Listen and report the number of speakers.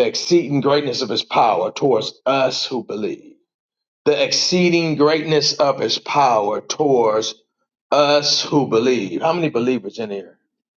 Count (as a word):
one